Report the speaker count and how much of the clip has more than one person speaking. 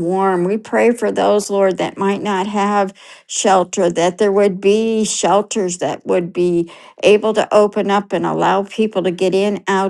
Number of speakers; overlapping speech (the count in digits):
1, no overlap